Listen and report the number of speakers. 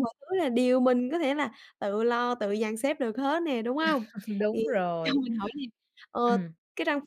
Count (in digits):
2